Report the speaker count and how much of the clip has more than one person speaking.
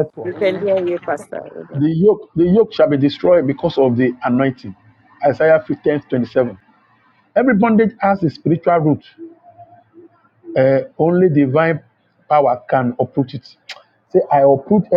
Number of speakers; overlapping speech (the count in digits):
2, about 1%